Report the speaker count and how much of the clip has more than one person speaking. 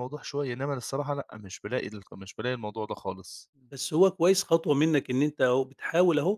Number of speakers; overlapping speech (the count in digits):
2, no overlap